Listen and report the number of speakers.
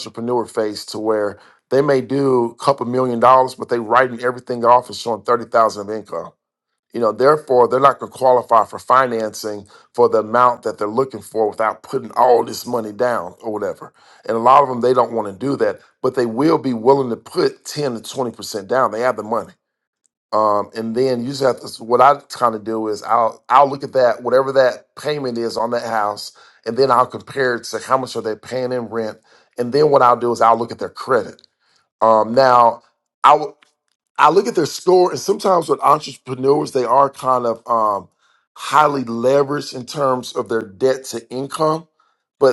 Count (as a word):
one